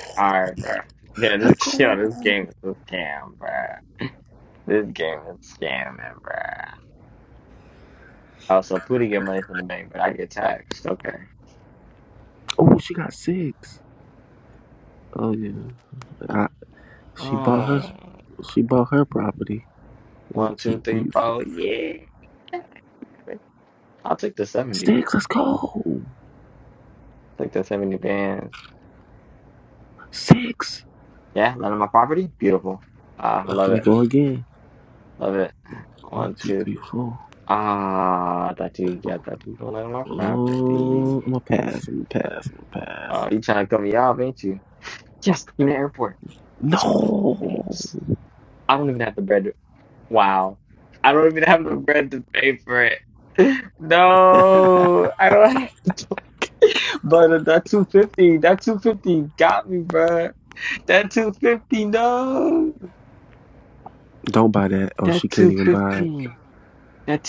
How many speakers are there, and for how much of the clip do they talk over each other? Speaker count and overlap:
2, about 8%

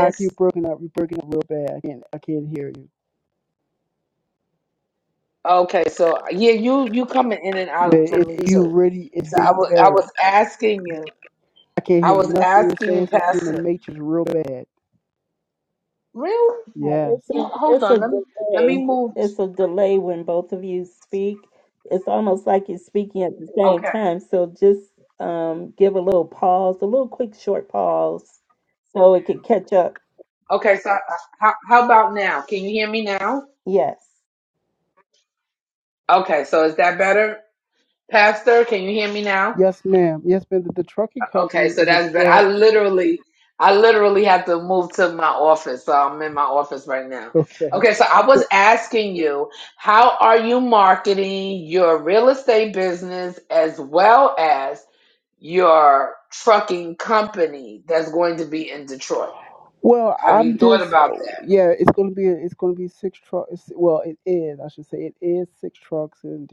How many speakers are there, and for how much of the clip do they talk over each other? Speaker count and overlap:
3, about 11%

